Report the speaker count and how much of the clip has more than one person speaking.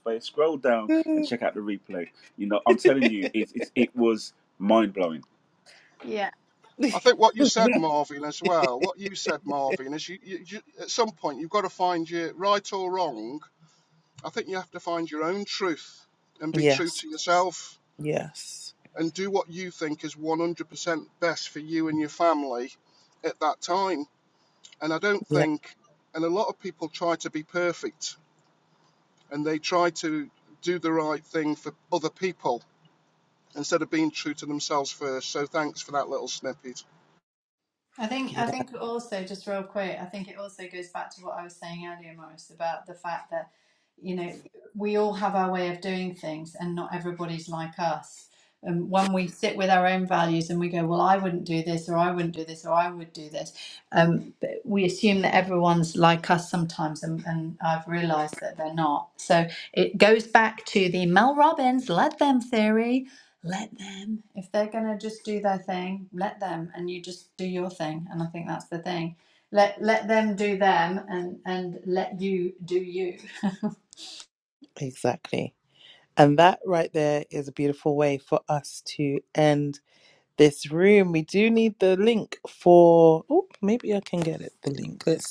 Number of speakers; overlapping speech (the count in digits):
4, about 1%